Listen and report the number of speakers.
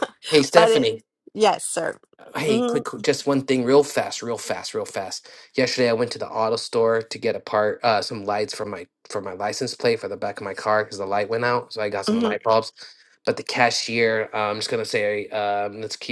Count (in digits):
2